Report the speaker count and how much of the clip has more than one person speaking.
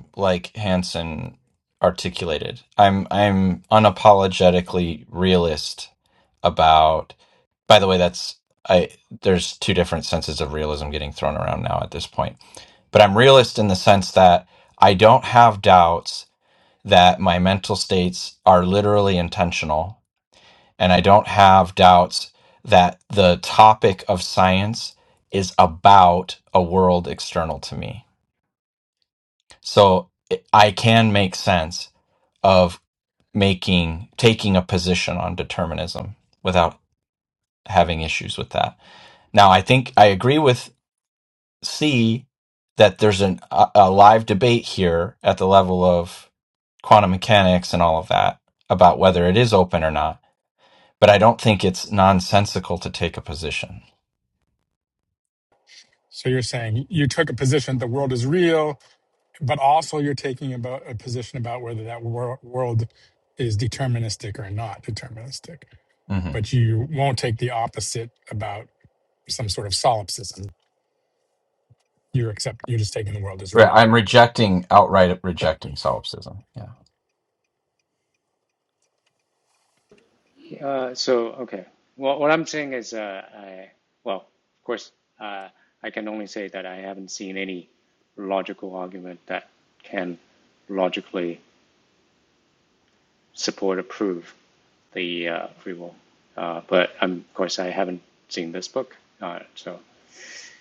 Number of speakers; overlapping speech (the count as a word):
three, under 1%